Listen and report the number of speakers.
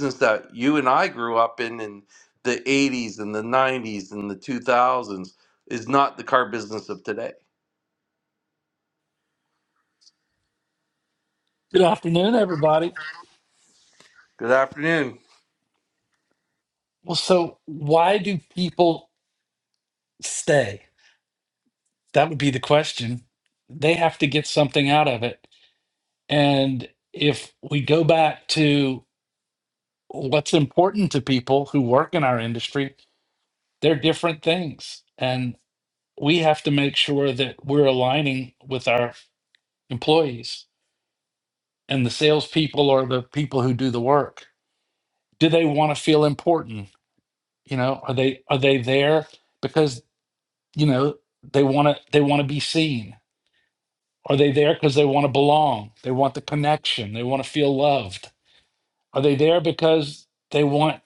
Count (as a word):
two